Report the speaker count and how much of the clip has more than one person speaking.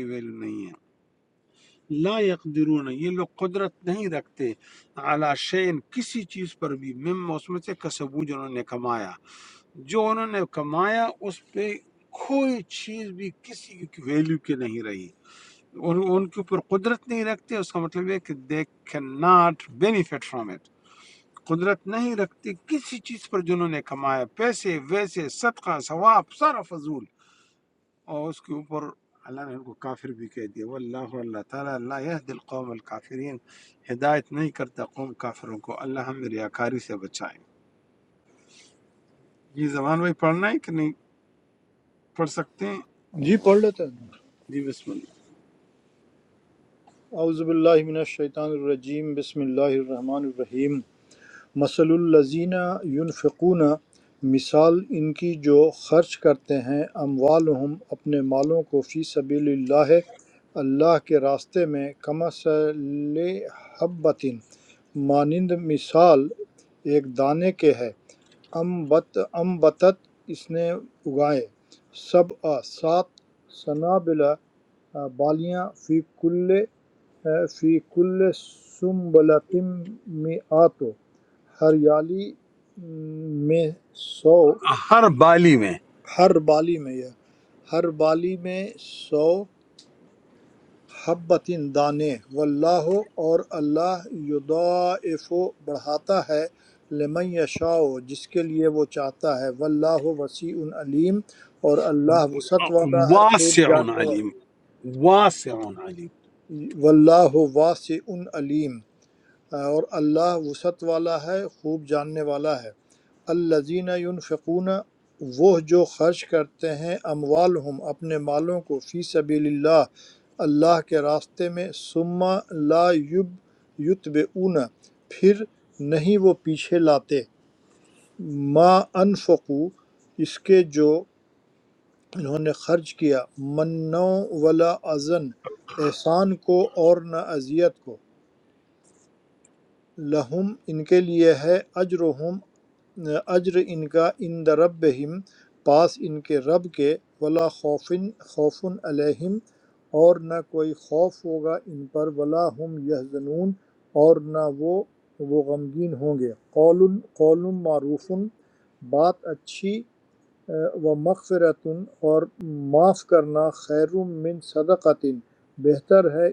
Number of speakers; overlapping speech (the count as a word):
two, about 1%